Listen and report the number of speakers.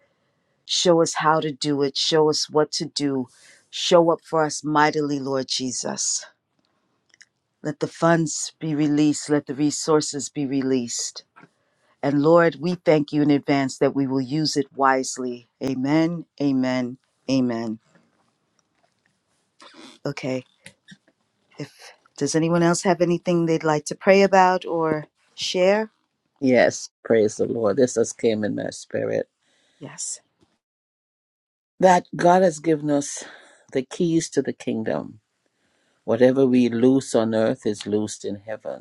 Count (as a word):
two